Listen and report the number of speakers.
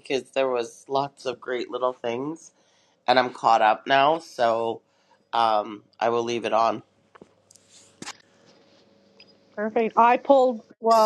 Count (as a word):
two